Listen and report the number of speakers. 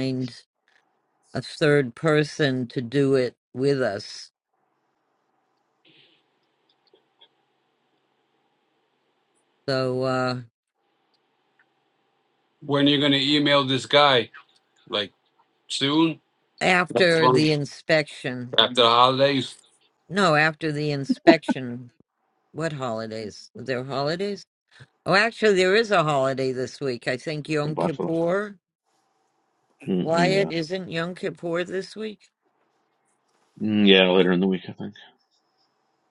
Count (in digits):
3